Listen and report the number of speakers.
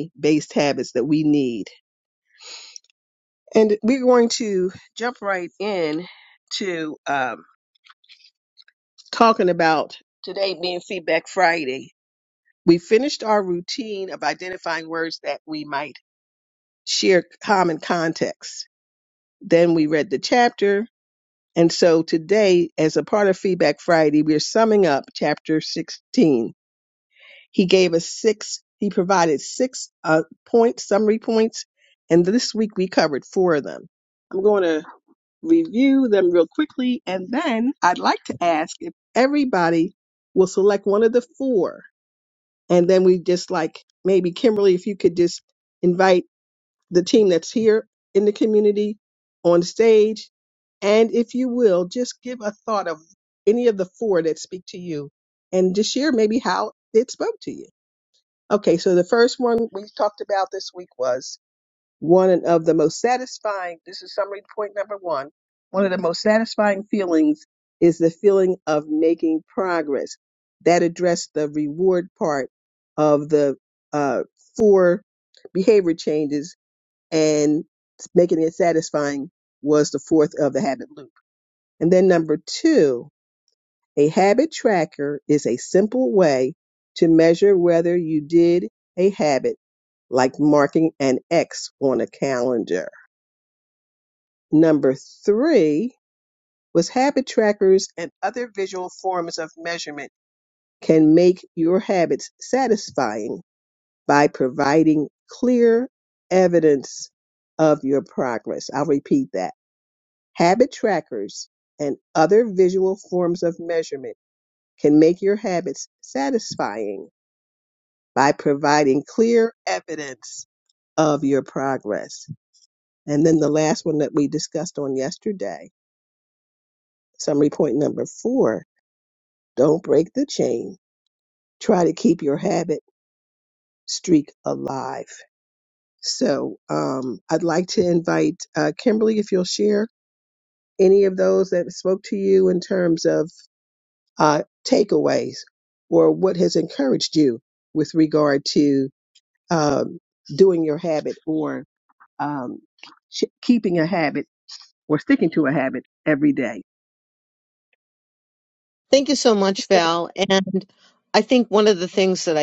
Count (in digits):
2